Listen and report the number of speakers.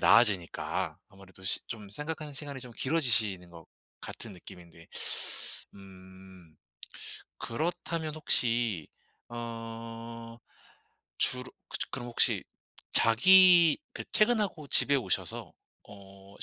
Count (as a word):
one